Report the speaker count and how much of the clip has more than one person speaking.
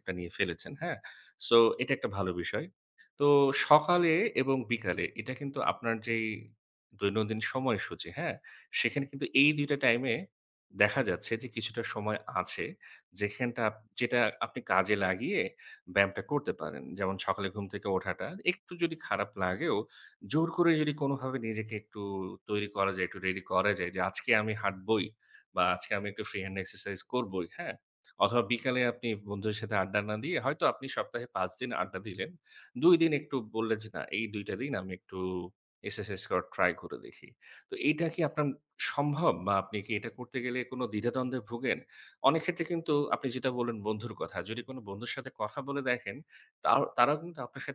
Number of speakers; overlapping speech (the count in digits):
1, no overlap